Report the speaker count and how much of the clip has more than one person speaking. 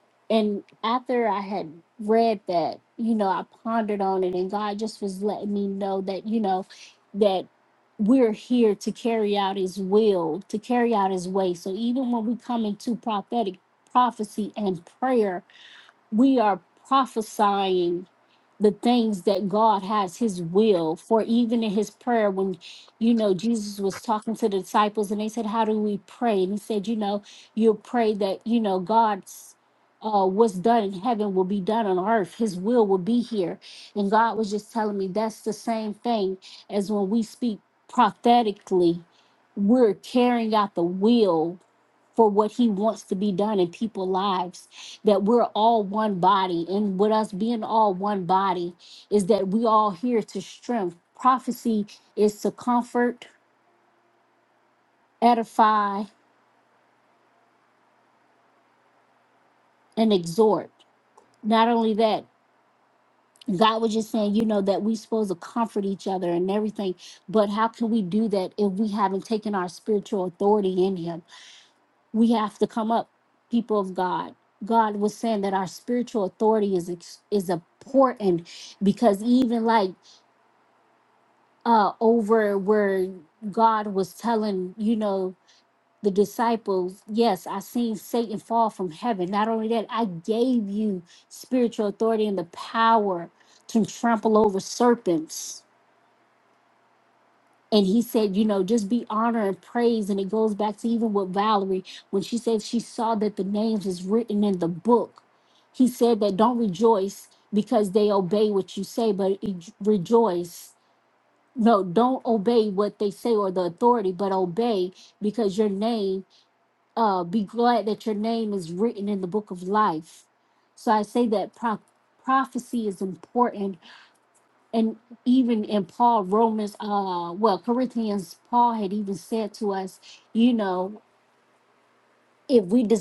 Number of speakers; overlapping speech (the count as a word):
one, no overlap